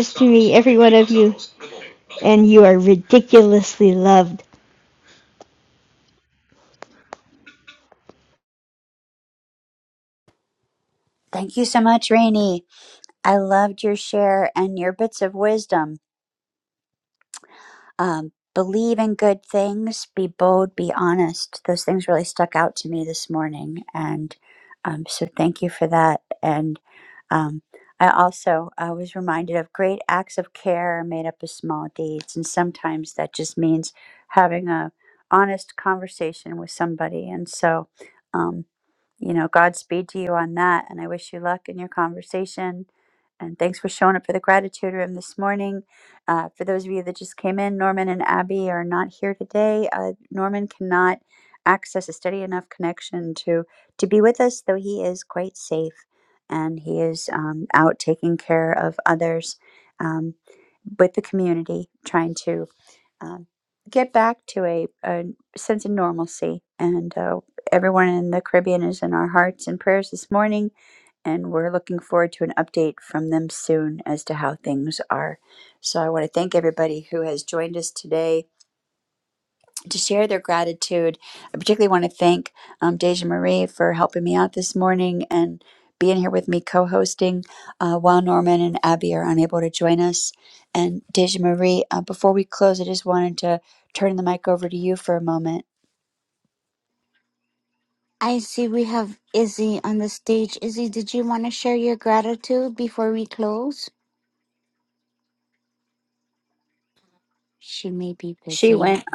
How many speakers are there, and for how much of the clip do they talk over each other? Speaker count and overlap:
3, under 1%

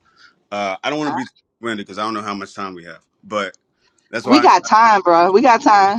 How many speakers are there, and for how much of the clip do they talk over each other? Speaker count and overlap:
2, about 19%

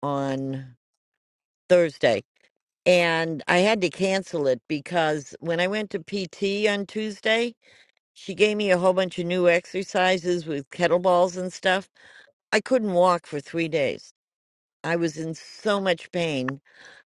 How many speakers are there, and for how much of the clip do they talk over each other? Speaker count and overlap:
1, no overlap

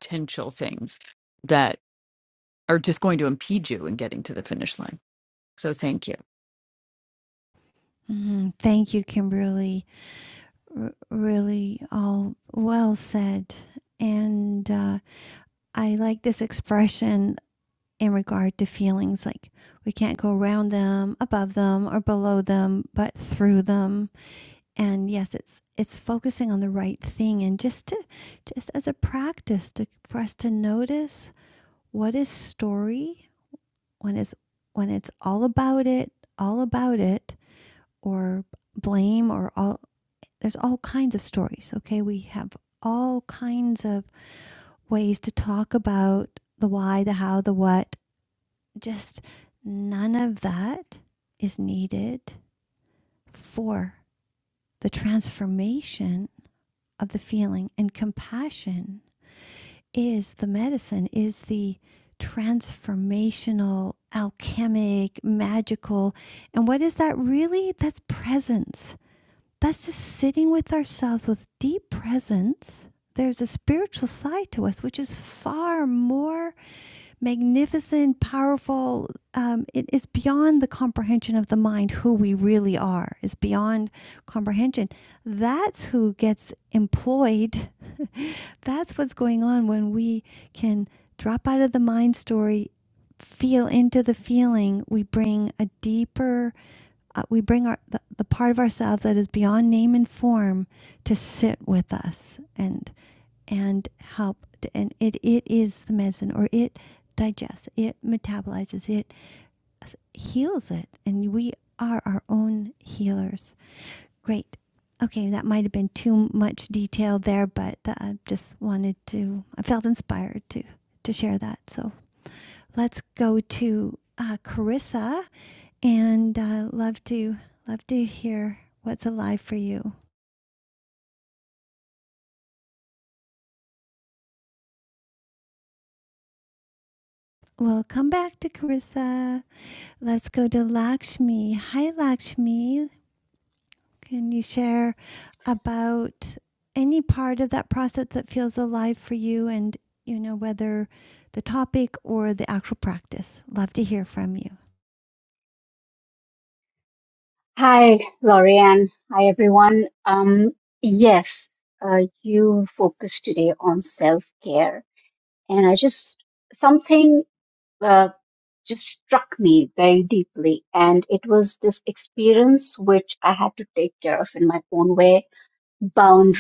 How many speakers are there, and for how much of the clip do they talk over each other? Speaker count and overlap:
3, no overlap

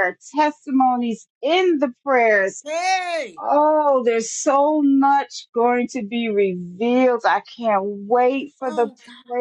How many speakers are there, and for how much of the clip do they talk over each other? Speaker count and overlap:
2, about 3%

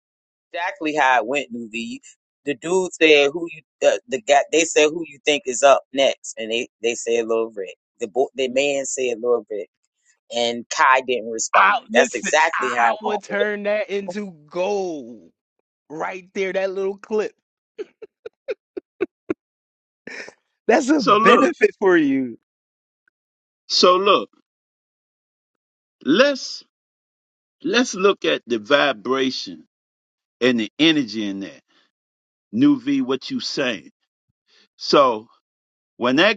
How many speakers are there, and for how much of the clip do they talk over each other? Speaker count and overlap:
3, about 6%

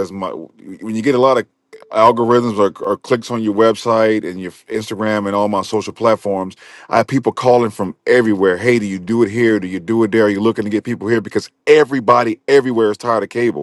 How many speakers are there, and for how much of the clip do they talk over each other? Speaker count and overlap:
1, no overlap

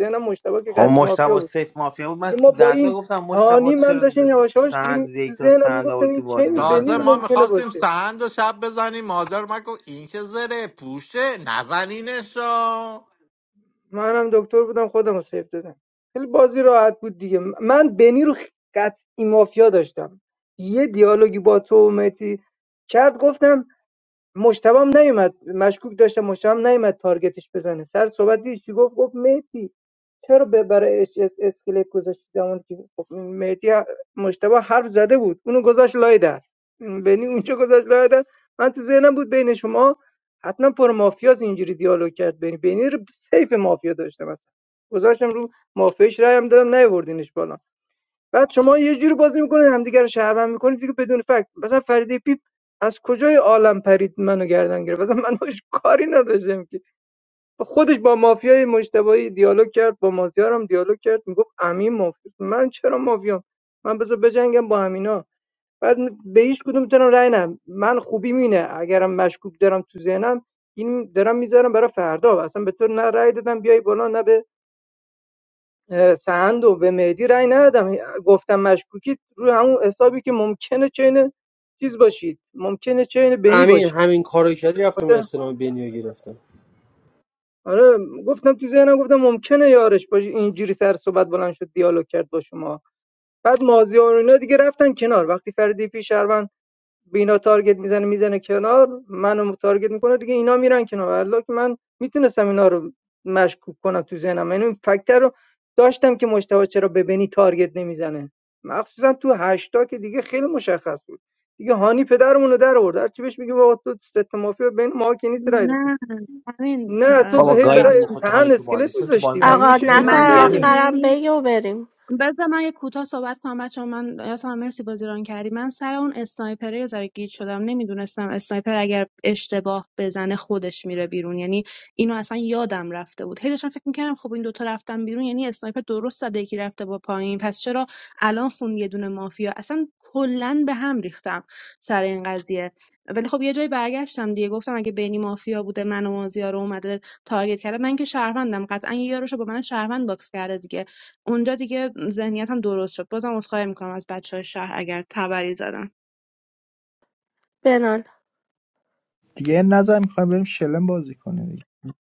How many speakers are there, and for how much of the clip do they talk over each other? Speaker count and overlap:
7, about 7%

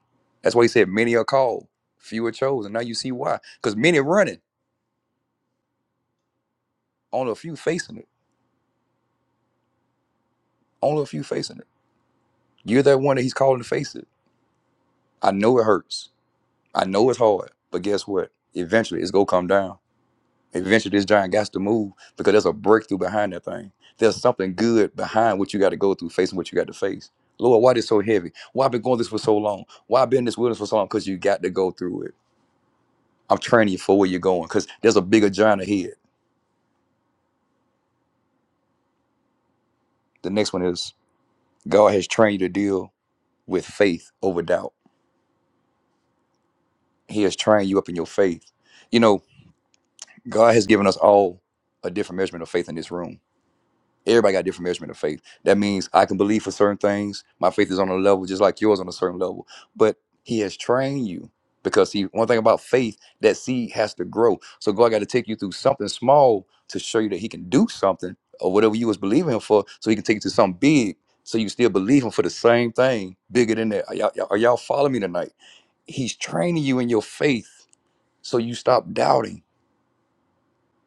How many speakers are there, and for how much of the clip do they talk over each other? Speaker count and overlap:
1, no overlap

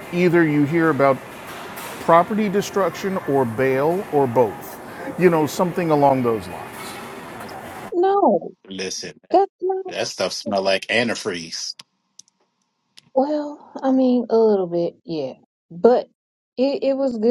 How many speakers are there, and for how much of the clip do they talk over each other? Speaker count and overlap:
3, under 1%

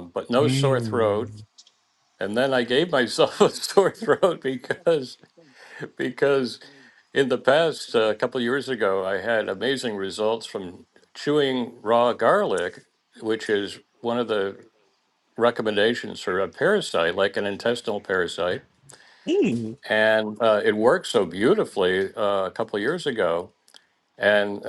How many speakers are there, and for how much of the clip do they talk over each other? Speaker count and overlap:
2, about 3%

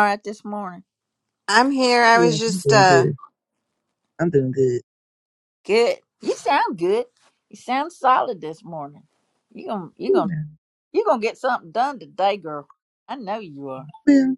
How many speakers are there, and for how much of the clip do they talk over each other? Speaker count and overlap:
3, about 9%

